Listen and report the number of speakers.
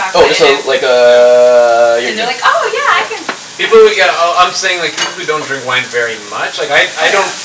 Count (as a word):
three